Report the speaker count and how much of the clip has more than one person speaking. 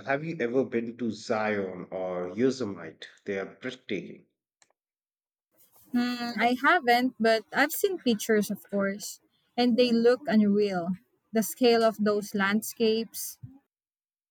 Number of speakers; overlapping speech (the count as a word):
two, no overlap